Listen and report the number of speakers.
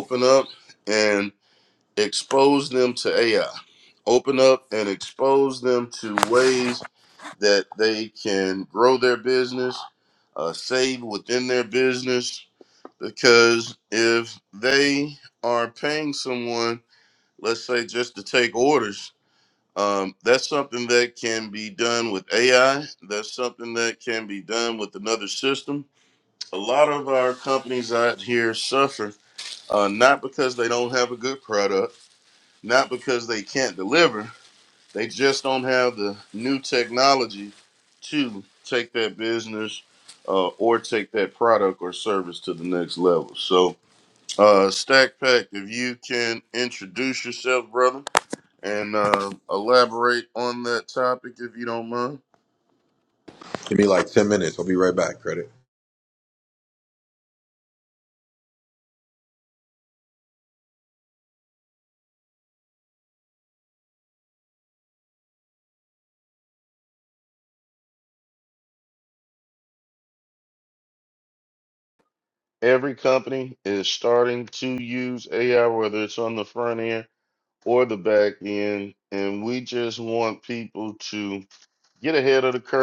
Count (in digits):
2